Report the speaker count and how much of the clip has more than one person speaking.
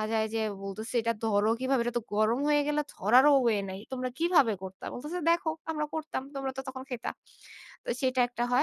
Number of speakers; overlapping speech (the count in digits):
1, no overlap